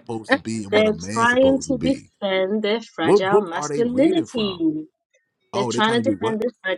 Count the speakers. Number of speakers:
two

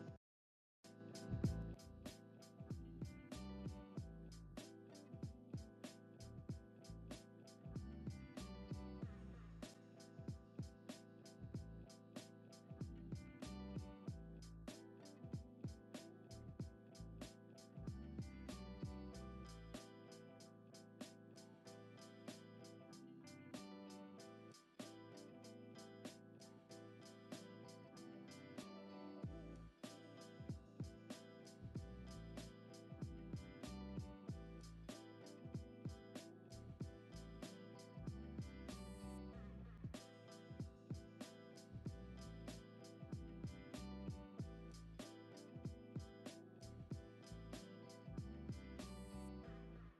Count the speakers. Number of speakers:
zero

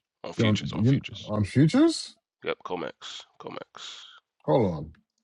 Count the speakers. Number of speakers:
two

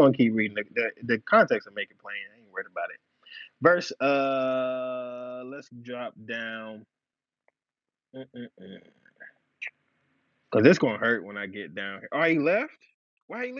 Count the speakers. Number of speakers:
one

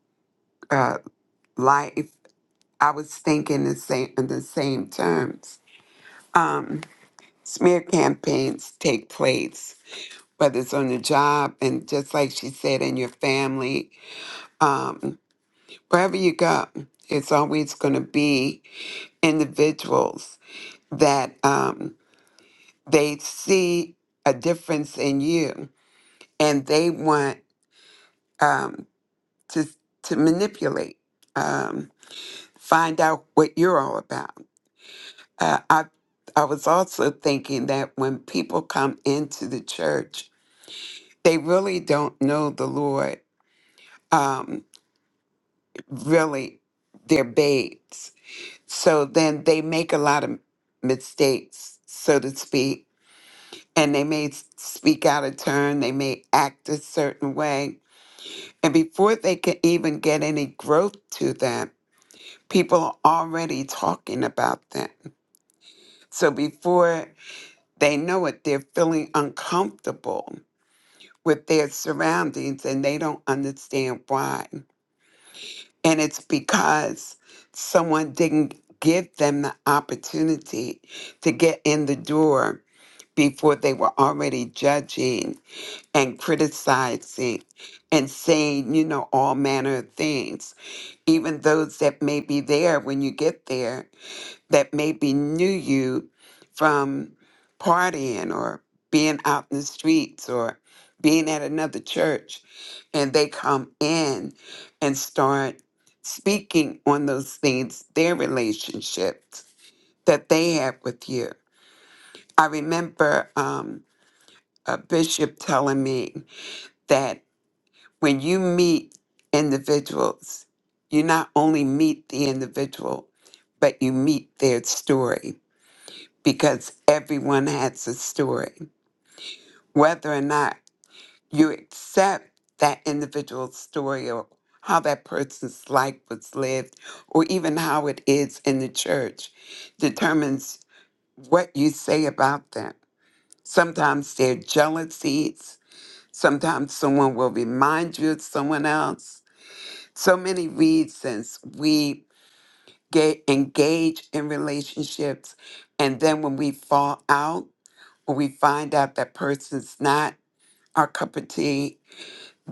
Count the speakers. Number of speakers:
one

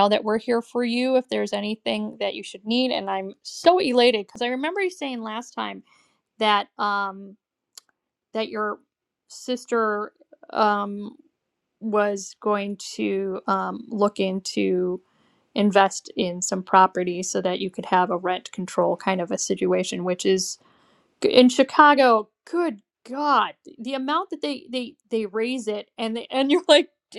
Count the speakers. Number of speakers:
one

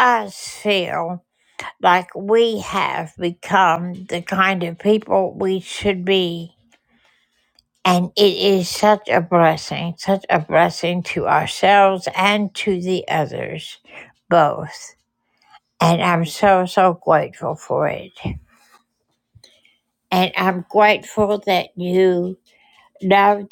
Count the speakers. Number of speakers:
one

